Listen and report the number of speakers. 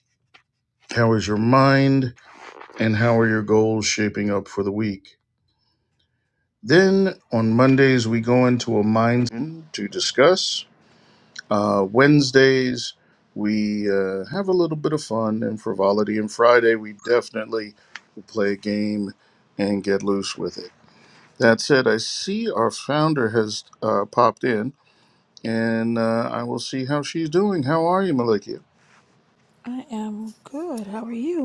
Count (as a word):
two